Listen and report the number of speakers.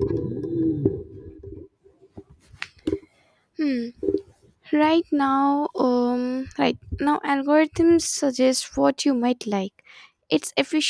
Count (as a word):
one